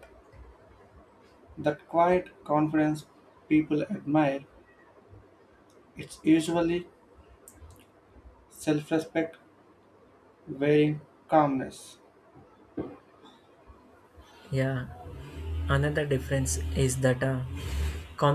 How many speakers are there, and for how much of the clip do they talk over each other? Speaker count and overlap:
2, no overlap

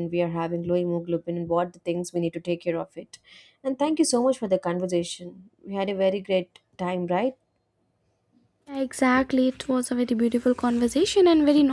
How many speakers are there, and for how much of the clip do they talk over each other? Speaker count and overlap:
2, no overlap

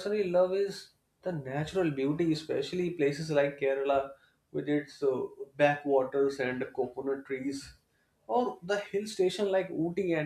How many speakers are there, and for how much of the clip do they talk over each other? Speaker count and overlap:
1, no overlap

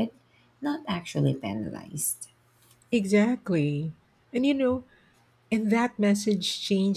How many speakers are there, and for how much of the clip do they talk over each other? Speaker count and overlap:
2, no overlap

